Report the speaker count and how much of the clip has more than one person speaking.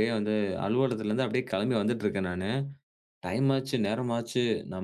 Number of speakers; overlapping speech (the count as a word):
one, no overlap